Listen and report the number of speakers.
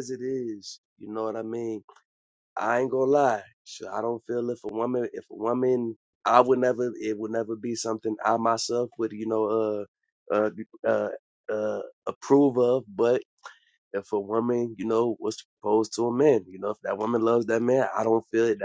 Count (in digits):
1